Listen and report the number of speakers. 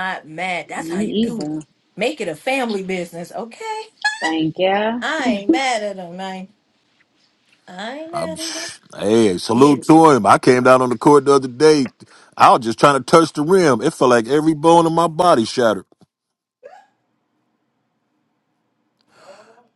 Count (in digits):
3